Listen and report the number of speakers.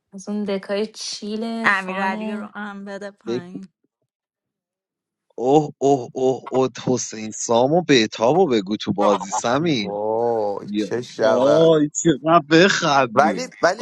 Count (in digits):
4